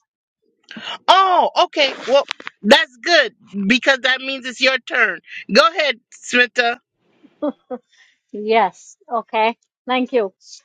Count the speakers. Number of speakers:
2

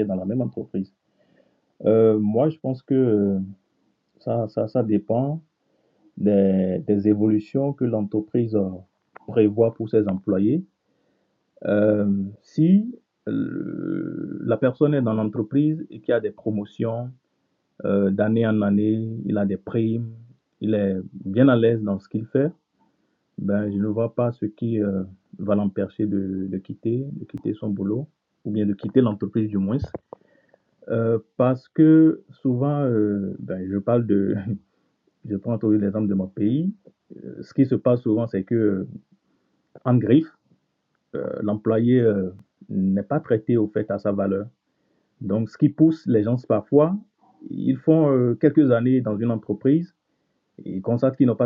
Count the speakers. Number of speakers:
1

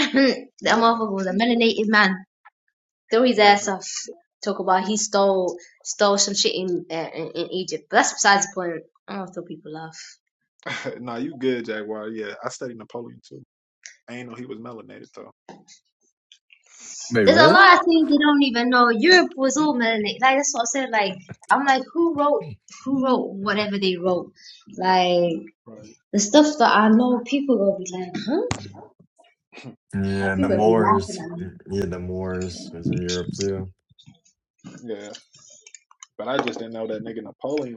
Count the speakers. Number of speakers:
3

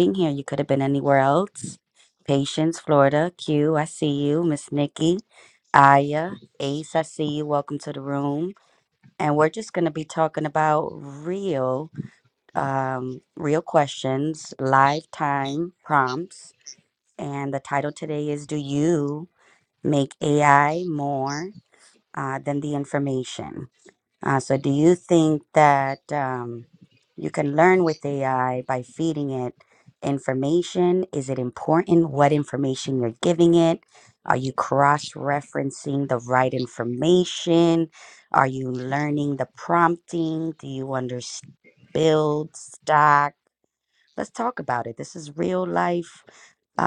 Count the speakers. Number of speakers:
1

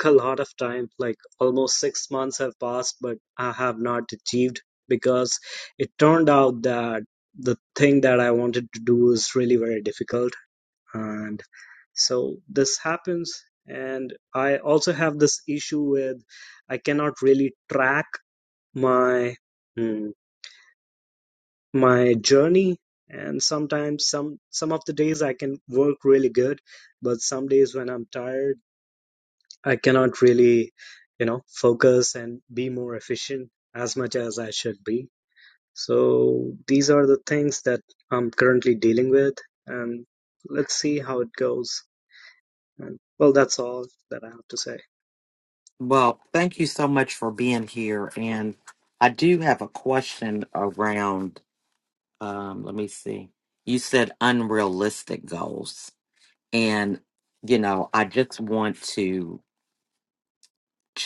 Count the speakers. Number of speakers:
2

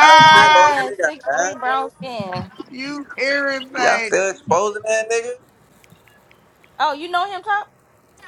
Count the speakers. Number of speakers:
3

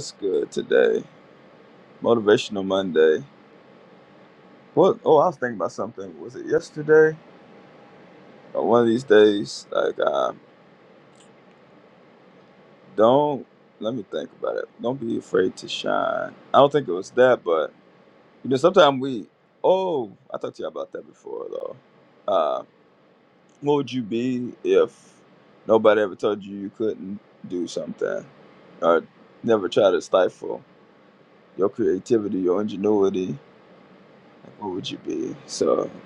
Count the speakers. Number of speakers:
1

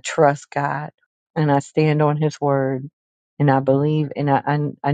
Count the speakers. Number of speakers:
1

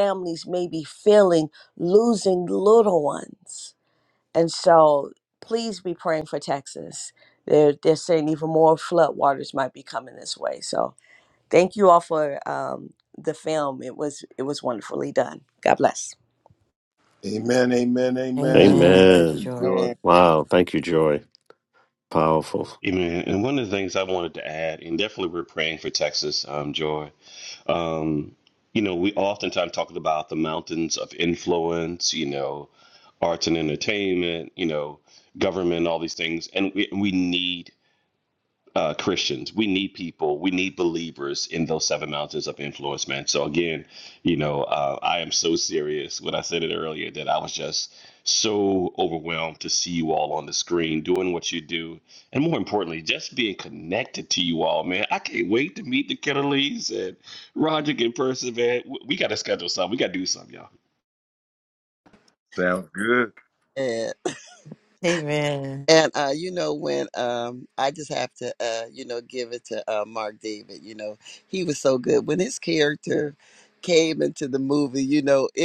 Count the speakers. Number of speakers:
6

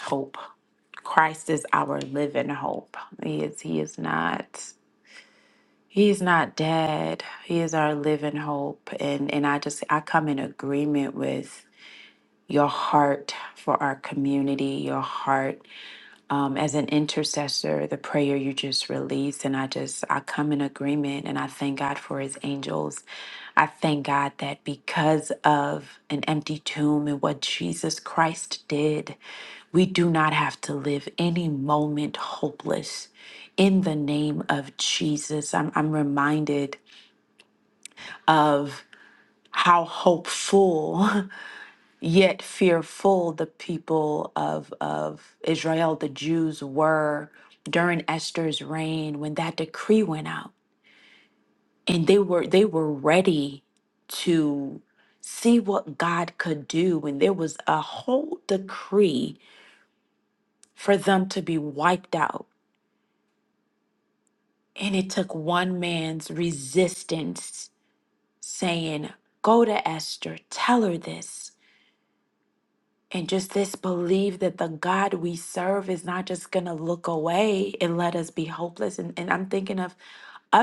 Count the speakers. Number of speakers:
1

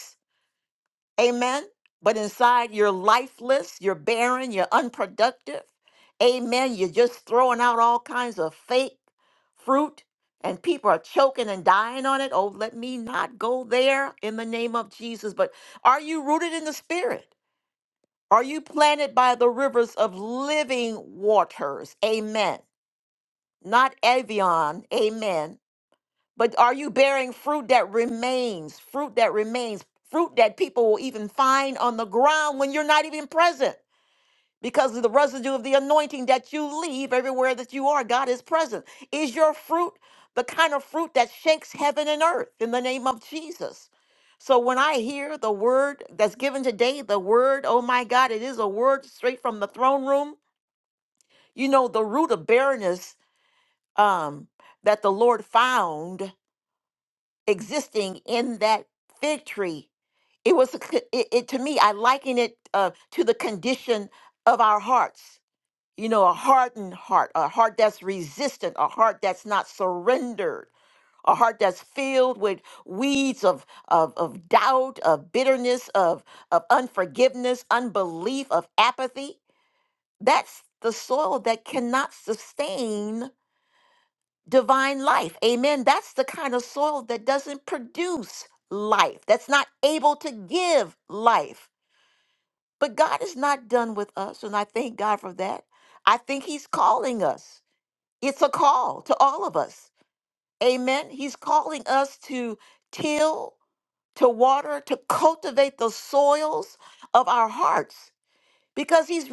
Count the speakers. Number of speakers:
1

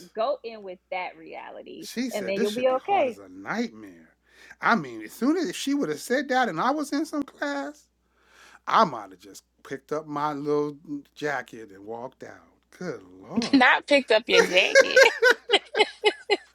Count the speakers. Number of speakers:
3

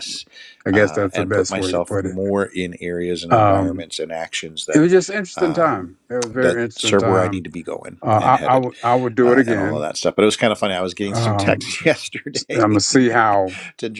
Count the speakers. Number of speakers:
2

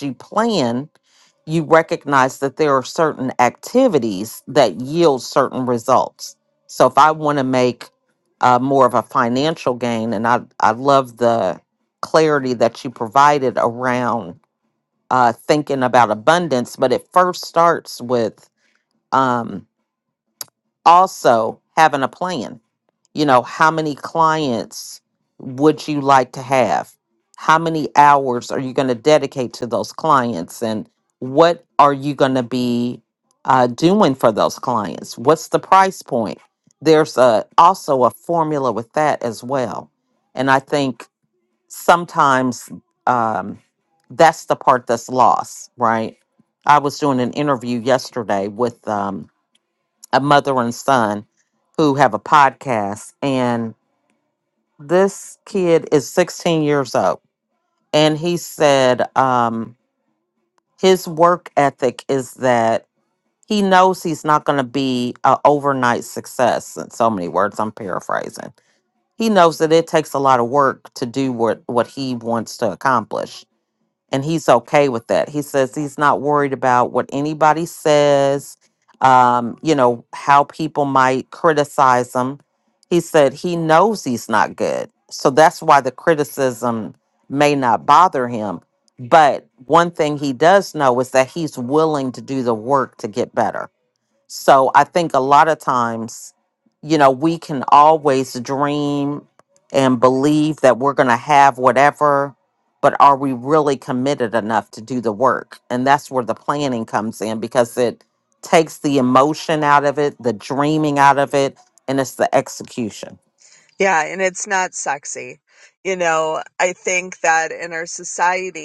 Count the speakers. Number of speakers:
2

